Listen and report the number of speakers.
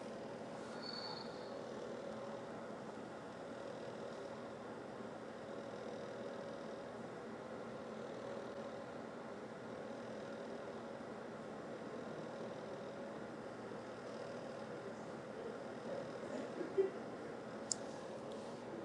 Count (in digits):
0